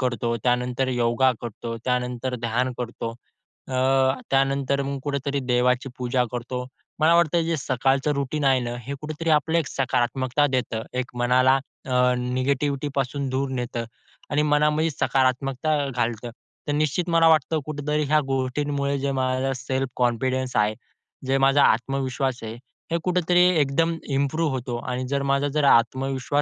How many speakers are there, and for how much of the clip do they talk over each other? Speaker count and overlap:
one, no overlap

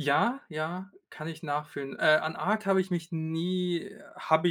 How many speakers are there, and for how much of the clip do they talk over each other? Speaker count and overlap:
one, no overlap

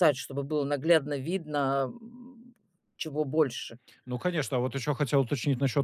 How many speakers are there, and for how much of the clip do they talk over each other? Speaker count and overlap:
two, no overlap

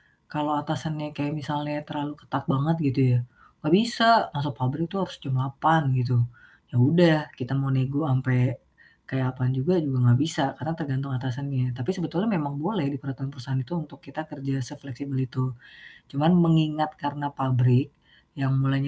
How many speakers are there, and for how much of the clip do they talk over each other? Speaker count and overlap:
one, no overlap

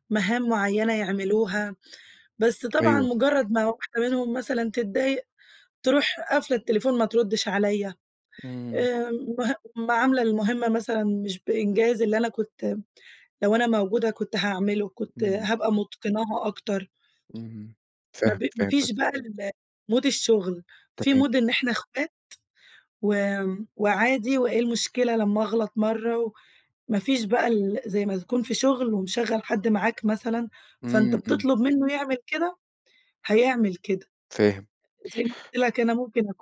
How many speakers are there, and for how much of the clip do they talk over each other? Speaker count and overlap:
two, about 6%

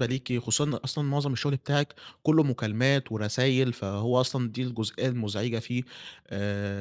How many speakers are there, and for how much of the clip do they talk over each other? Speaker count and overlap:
one, no overlap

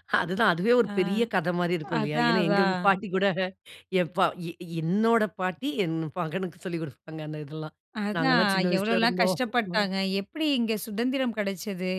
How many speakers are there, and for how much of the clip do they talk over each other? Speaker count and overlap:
two, about 21%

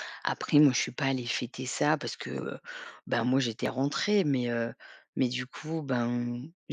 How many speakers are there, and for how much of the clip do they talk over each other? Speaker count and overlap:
one, no overlap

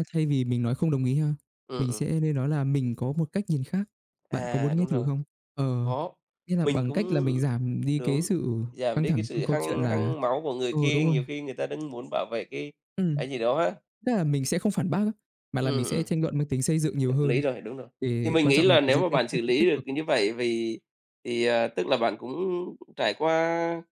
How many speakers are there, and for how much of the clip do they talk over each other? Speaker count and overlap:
two, about 27%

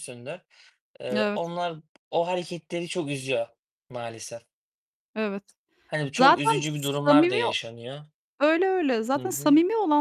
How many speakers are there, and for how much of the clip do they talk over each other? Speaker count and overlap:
two, about 15%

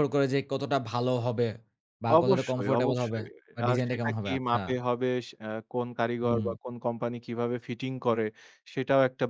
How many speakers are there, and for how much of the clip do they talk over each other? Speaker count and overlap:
two, about 27%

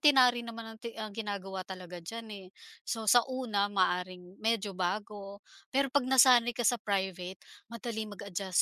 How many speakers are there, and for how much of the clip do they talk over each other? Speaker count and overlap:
one, no overlap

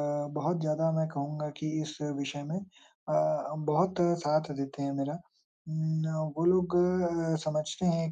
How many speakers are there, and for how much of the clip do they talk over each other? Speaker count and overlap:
one, no overlap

